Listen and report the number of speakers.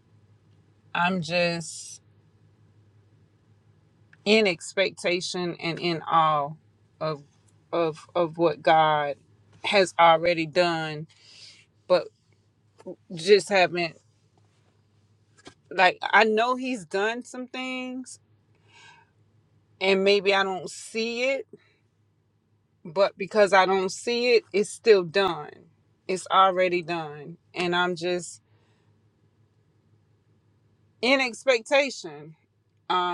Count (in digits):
1